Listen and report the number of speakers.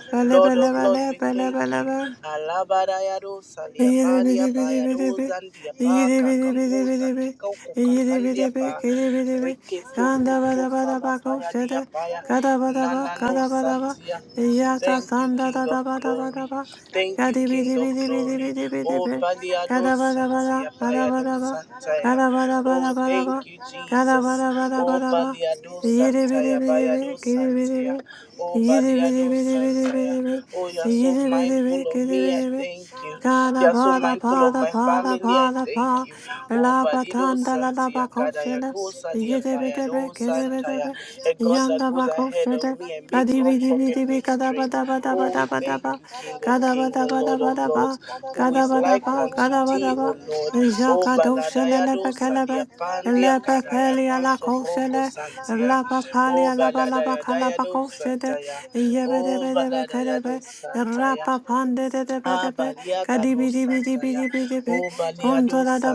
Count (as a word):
two